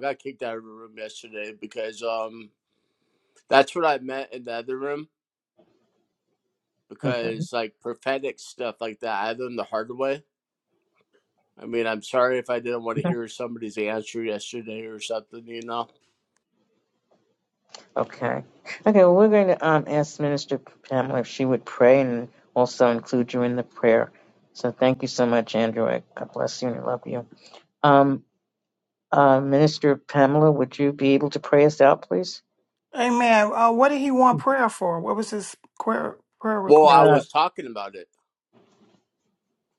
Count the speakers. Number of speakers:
three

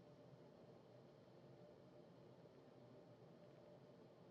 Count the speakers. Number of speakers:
zero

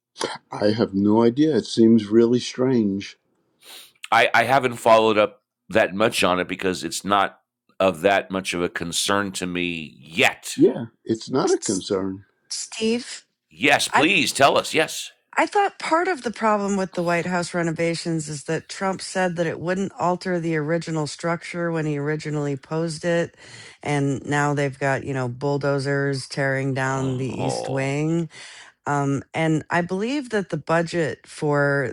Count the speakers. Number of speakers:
three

